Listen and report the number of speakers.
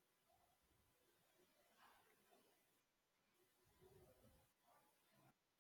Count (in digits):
0